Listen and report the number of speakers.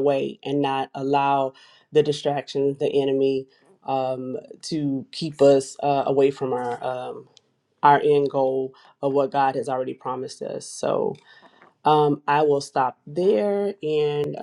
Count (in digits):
1